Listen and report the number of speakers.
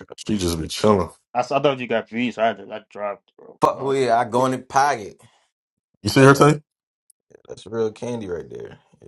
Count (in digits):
3